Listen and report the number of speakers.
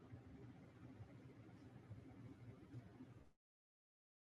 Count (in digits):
0